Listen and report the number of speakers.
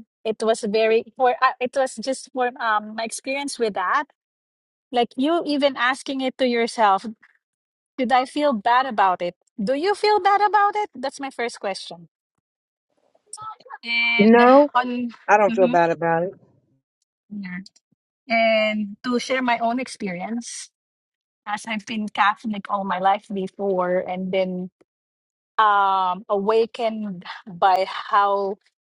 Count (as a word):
two